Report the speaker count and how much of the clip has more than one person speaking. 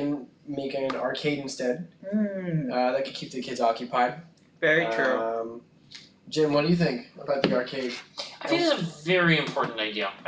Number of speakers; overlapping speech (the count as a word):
three, about 4%